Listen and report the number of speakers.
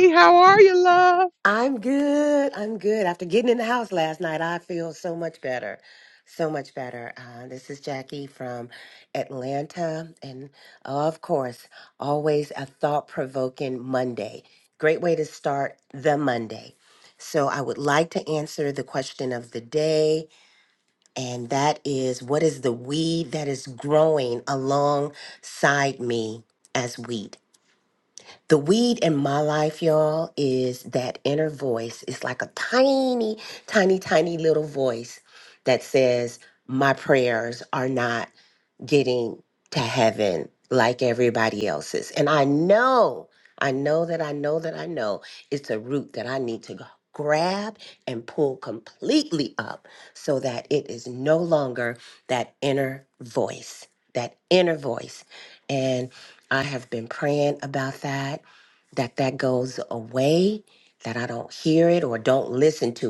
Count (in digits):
2